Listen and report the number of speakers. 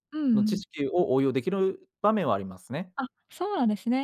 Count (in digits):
2